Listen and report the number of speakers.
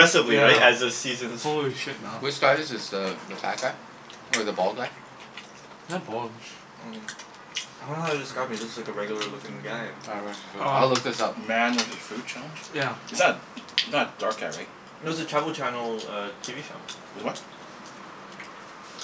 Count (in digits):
4